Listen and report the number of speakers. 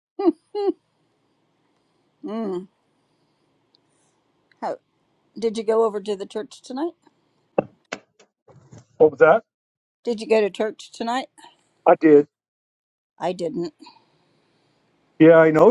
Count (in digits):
2